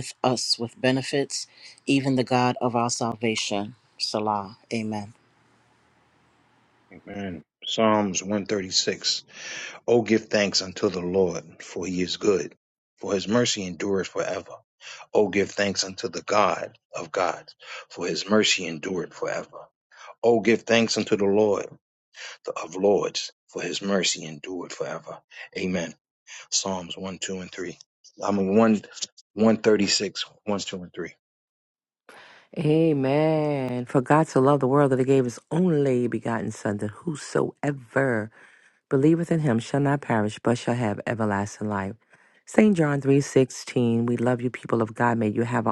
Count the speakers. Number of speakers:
3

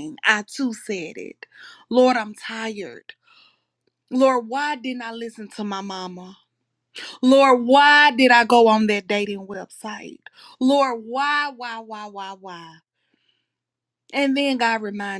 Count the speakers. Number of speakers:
1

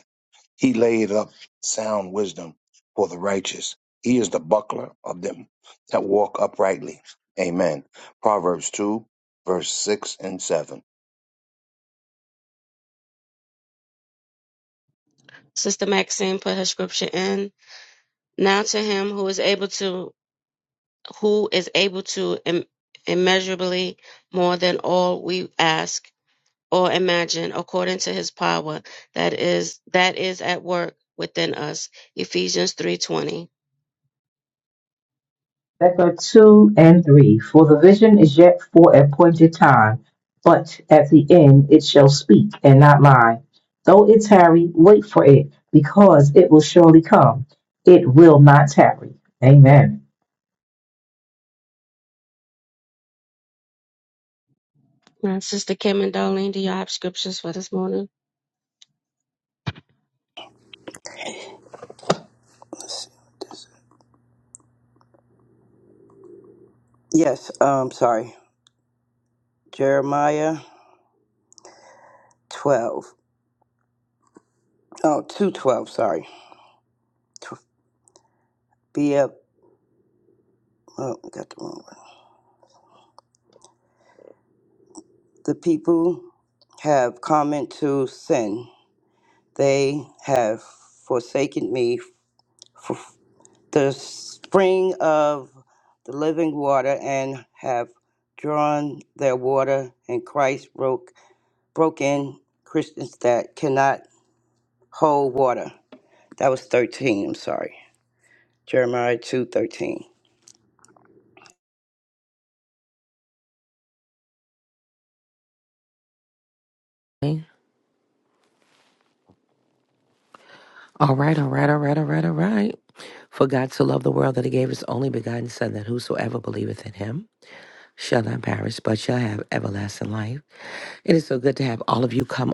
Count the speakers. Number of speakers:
5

